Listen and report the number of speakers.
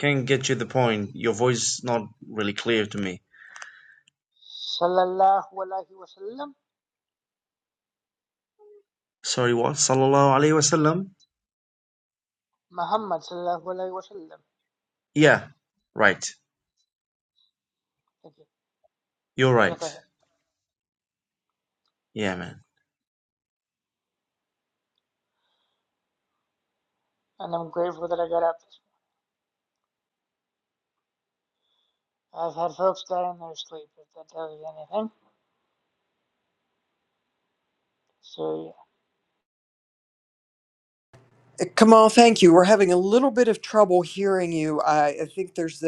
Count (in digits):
3